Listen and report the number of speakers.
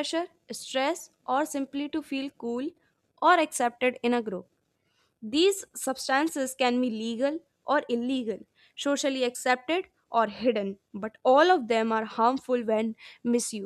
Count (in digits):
1